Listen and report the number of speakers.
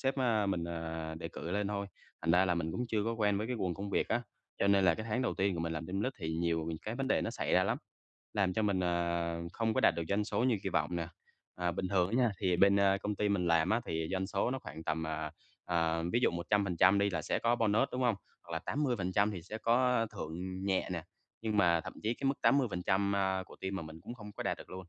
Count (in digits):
1